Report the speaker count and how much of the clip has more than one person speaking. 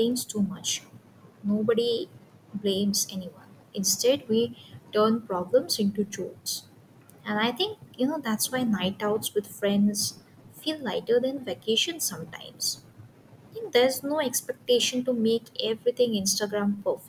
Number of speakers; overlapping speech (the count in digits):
1, no overlap